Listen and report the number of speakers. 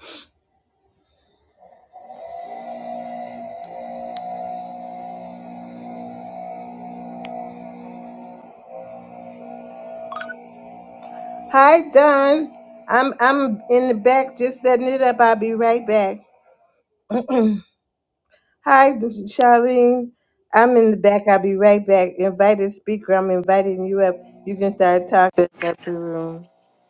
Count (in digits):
1